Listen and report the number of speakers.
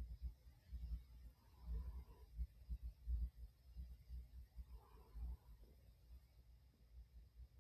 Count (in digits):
0